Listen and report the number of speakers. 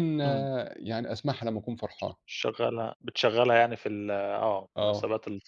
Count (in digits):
2